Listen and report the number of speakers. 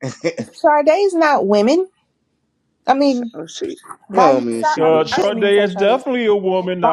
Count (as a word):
three